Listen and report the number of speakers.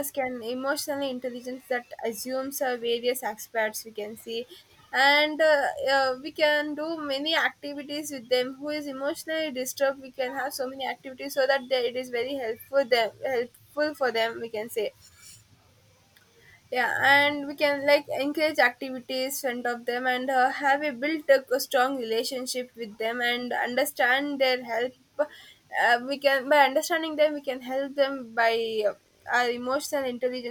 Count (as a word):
one